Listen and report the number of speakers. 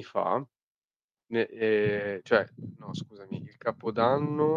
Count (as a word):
one